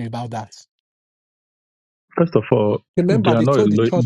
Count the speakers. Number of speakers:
2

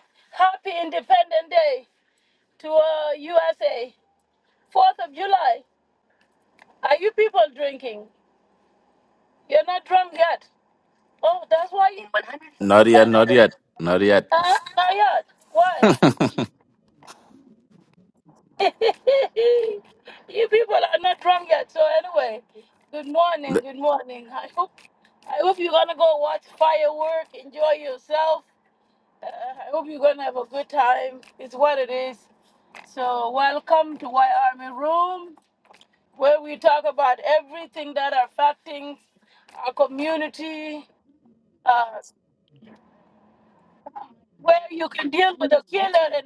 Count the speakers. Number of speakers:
2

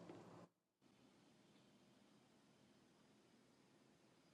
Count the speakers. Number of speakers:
0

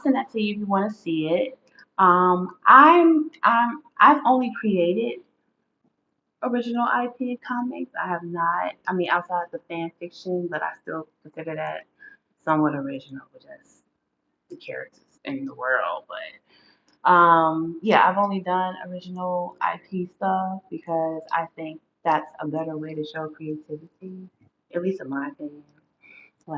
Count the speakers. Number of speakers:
1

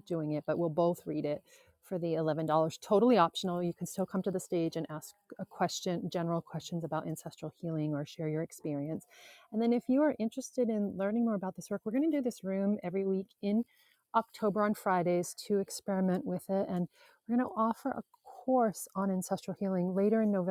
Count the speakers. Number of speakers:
1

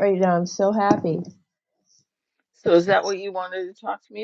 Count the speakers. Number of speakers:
2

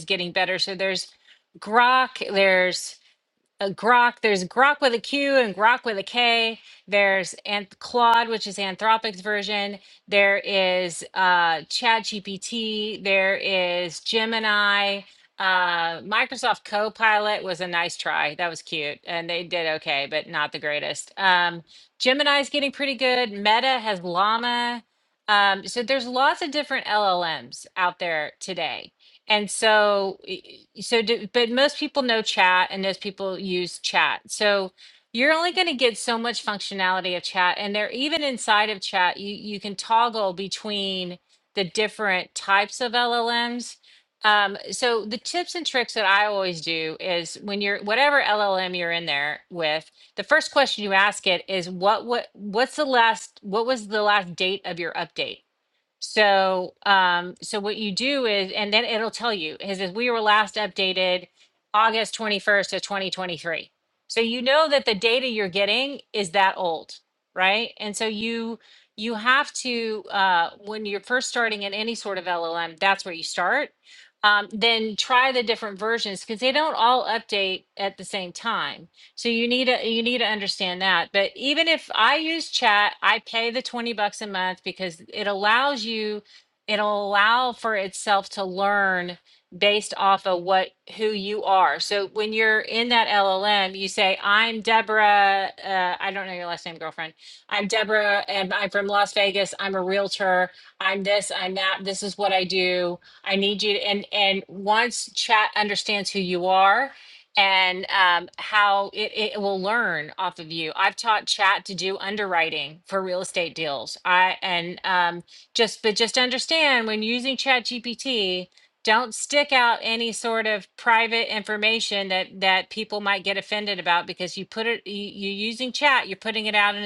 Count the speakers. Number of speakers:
1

